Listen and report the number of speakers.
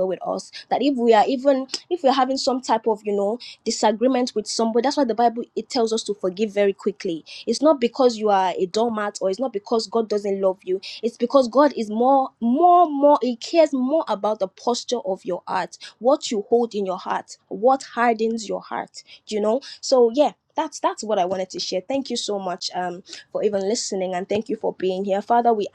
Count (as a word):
one